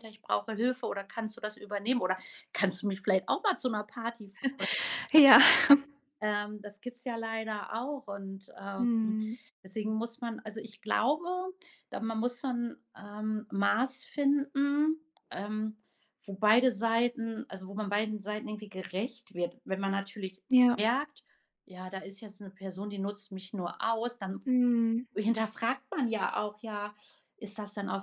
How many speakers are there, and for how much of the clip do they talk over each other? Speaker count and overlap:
2, under 1%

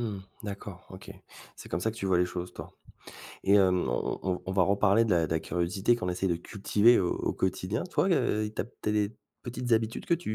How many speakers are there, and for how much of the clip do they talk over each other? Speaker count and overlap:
1, no overlap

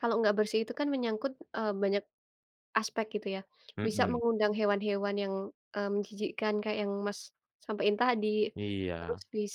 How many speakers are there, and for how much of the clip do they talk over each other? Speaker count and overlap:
2, about 5%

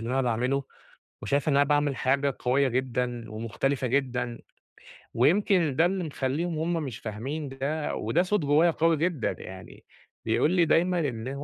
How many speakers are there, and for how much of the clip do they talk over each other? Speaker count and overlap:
1, no overlap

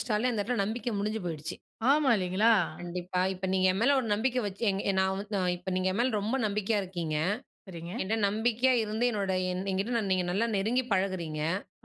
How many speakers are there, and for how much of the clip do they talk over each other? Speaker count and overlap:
2, about 1%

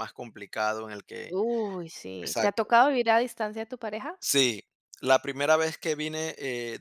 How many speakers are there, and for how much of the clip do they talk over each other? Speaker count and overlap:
2, about 7%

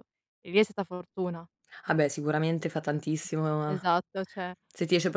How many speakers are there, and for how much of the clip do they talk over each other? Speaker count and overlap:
2, about 3%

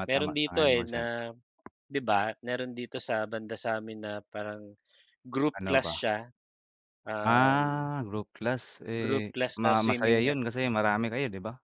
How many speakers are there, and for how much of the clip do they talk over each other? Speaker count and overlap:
2, about 29%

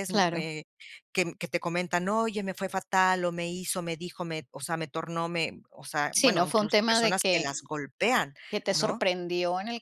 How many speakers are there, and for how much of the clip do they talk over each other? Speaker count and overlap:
2, about 21%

